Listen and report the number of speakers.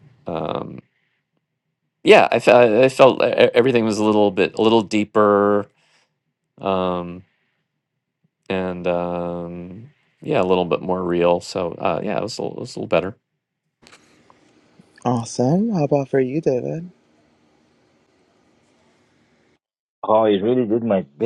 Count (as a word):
three